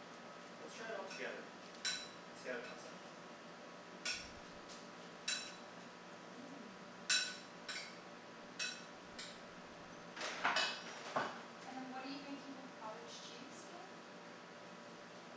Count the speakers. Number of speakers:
two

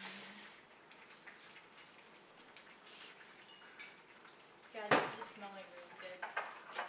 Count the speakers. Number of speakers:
one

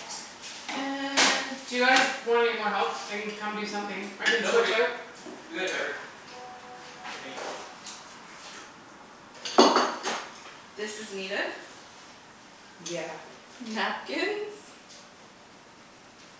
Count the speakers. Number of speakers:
three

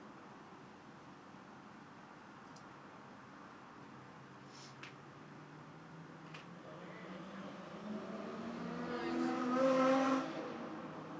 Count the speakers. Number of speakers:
two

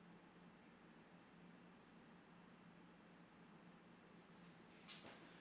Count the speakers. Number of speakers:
zero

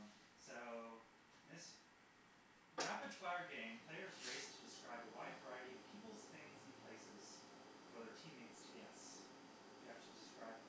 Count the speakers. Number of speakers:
one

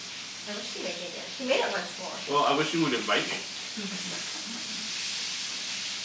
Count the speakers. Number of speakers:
two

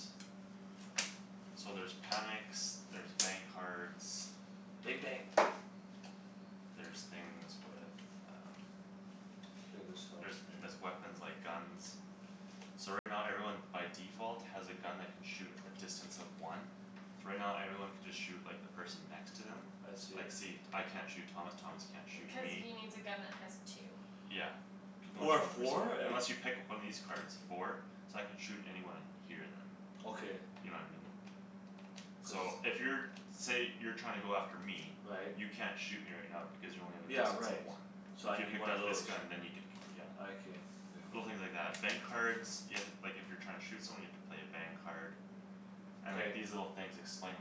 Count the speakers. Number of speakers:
three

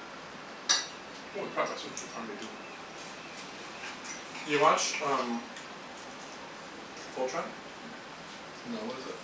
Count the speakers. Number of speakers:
two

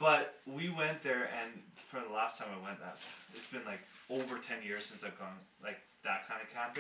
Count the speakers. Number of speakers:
one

